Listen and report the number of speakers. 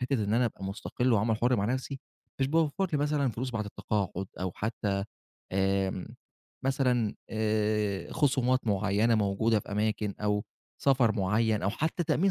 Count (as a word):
one